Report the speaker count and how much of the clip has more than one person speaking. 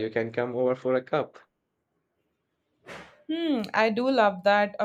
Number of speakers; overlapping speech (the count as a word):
two, no overlap